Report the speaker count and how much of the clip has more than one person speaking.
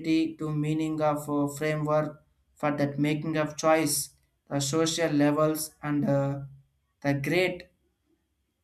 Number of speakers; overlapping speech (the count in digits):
1, no overlap